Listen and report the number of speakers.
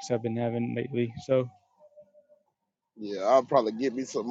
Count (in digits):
2